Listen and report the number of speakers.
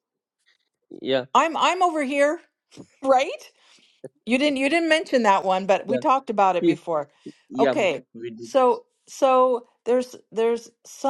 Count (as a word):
two